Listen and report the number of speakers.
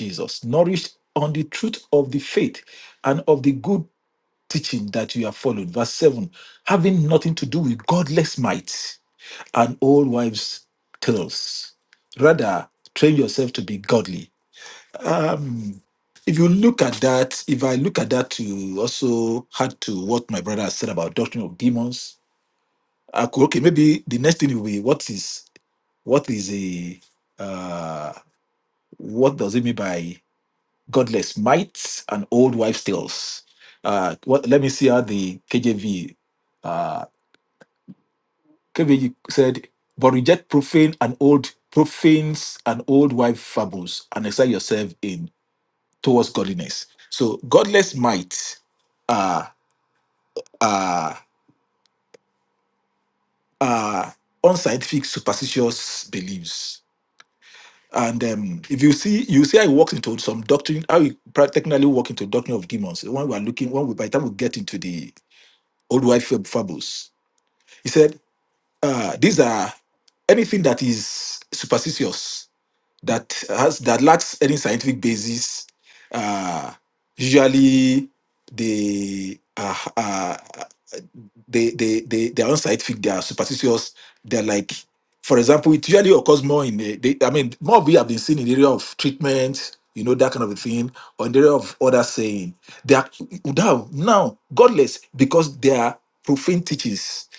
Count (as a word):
one